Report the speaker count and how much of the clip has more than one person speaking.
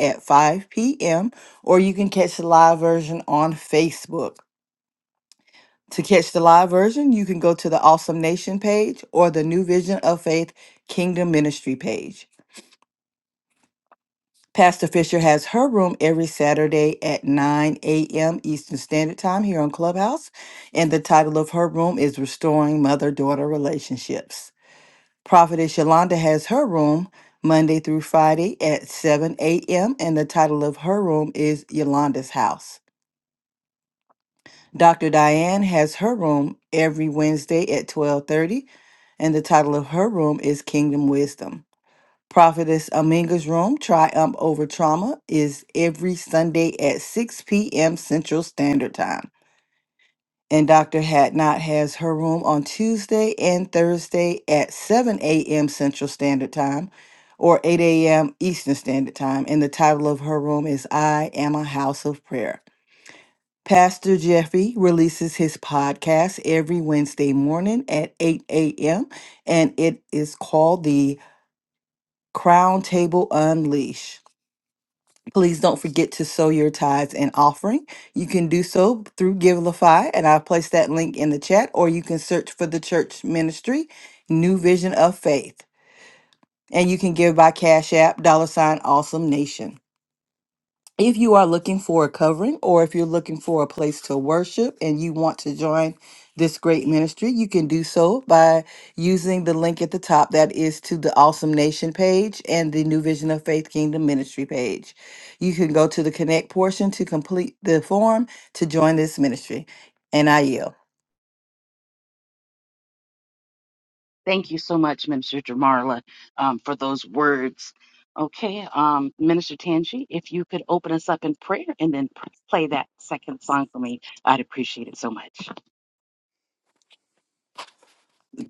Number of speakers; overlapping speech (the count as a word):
two, no overlap